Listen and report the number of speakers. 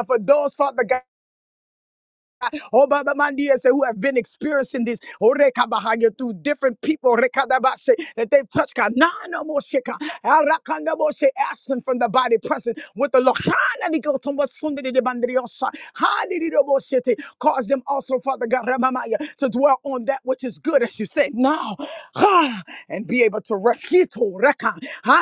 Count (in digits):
1